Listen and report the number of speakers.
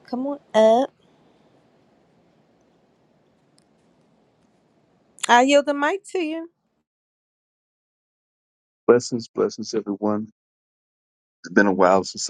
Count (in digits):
2